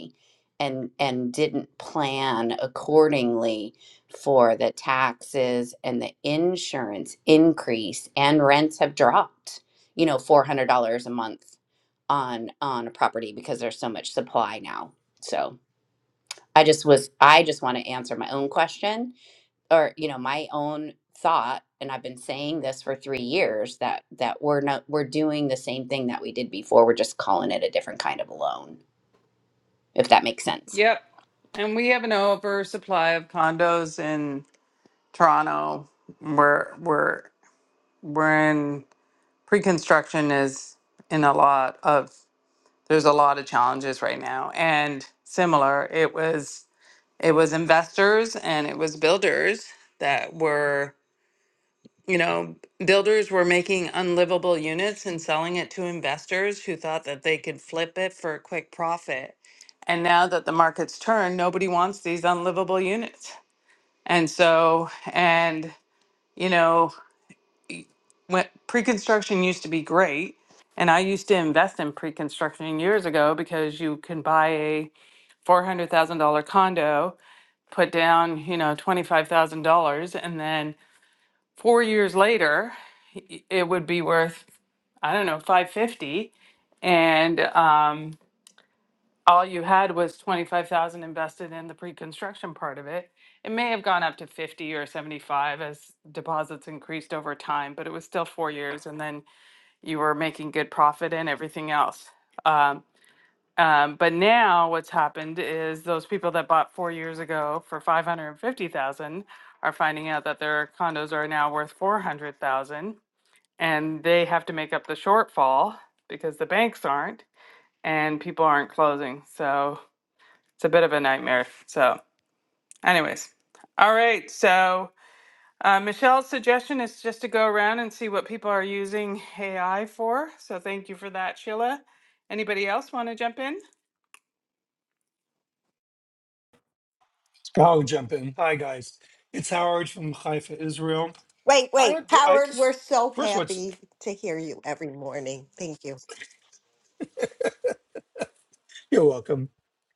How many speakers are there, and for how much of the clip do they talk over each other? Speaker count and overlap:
4, about 1%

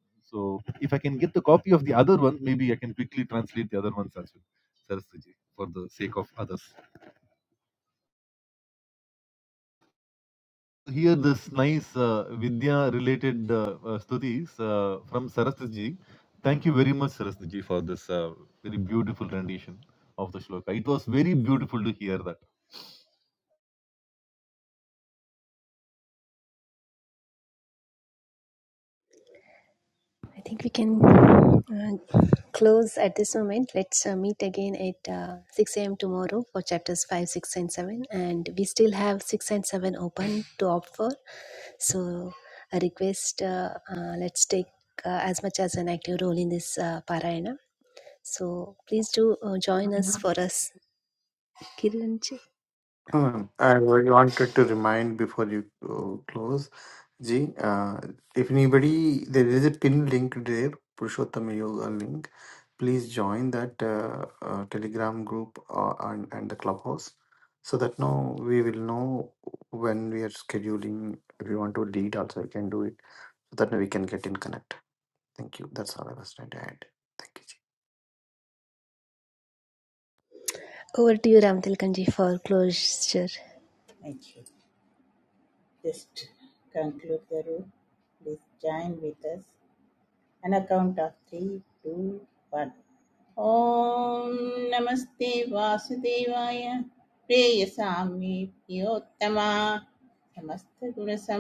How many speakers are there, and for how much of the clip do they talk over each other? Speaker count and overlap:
4, no overlap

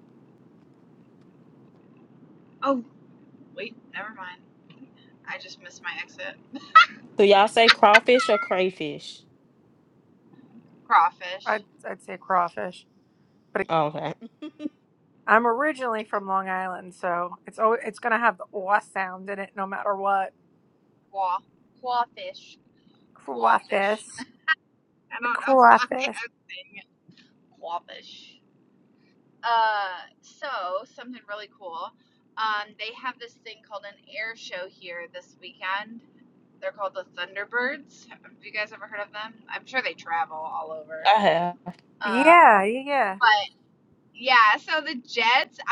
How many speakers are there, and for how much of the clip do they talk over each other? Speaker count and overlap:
3, about 5%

